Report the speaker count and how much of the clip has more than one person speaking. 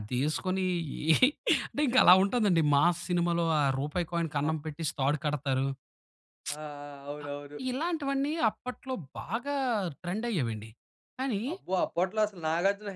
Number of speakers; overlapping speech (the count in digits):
2, about 2%